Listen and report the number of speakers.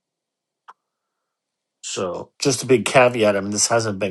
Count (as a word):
one